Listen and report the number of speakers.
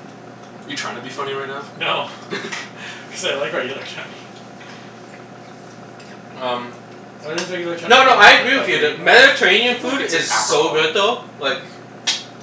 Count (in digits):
3